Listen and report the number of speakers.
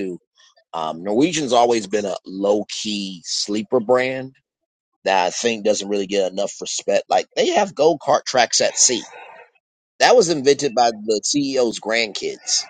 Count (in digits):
1